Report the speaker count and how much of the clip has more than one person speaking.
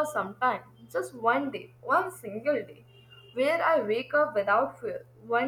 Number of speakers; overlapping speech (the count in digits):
1, no overlap